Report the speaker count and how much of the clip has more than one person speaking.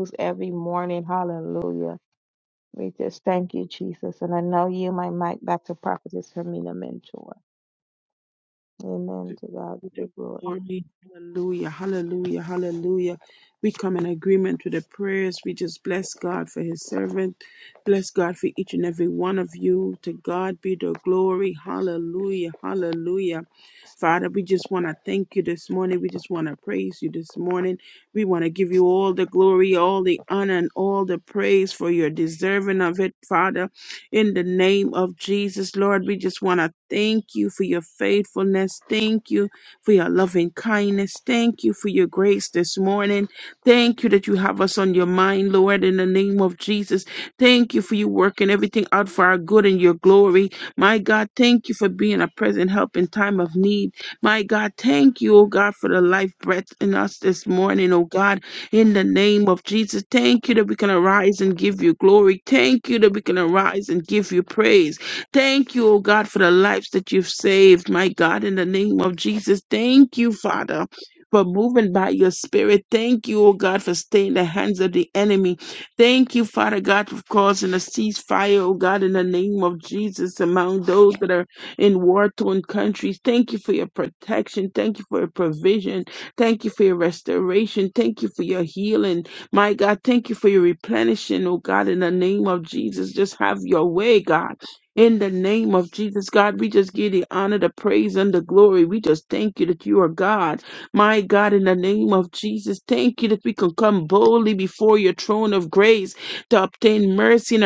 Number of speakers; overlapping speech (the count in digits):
2, under 1%